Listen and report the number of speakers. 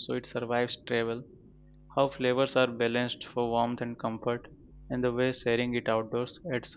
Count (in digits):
1